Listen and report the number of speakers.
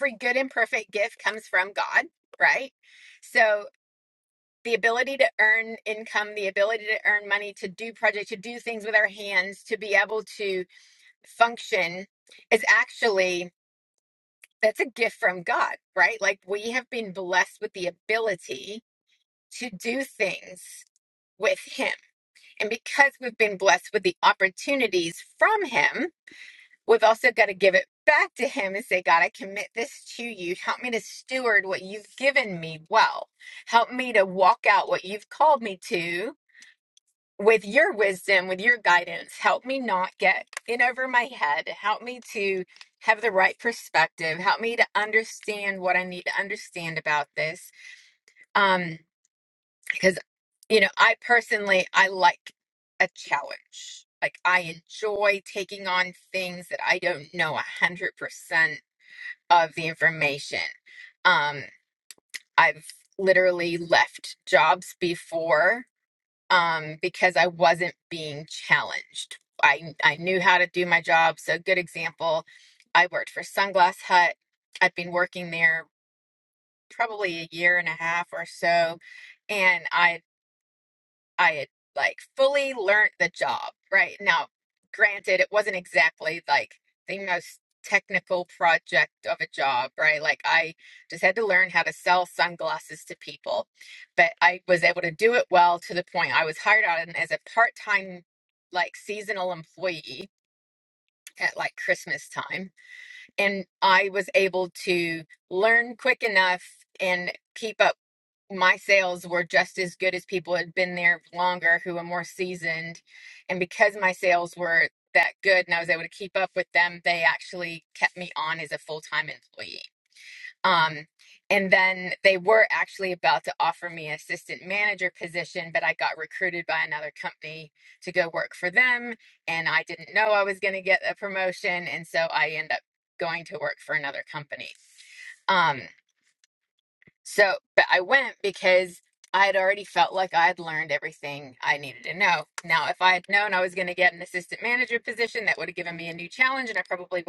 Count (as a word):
one